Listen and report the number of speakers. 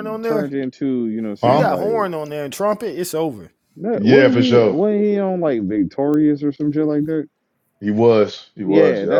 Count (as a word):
three